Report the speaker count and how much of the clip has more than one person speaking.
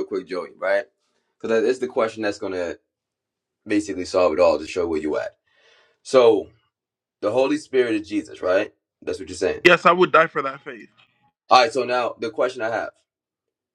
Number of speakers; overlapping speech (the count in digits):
2, no overlap